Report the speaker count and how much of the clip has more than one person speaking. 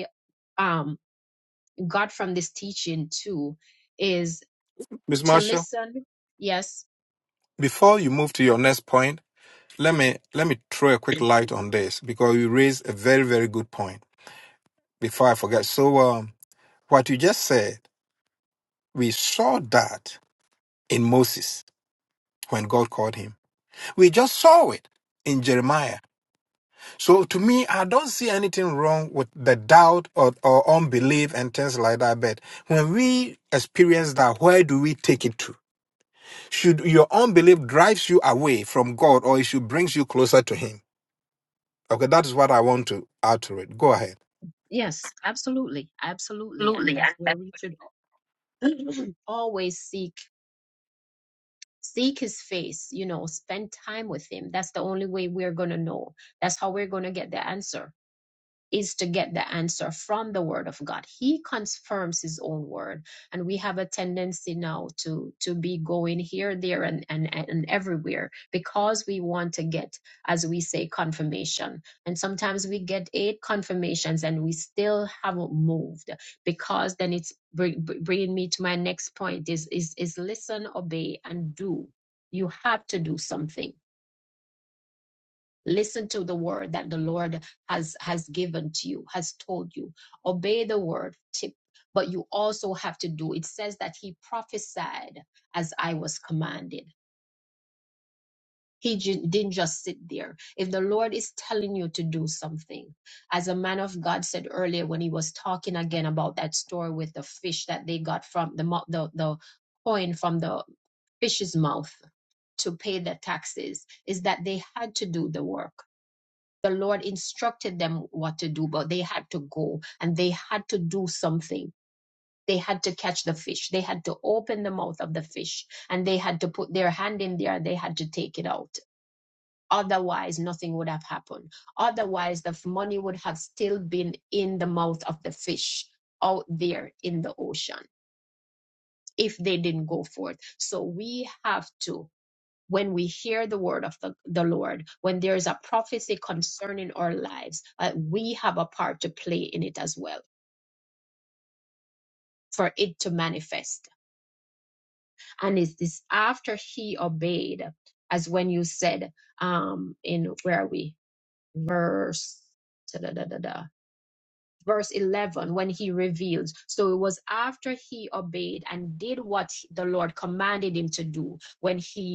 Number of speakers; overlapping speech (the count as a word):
two, under 1%